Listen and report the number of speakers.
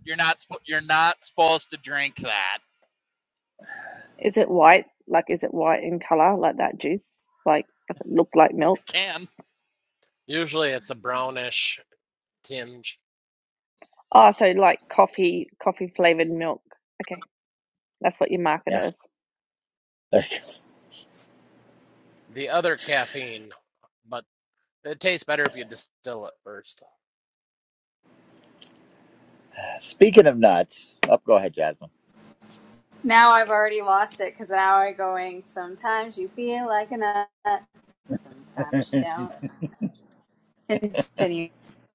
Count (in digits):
5